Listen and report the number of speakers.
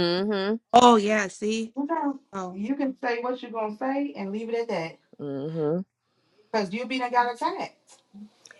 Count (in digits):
3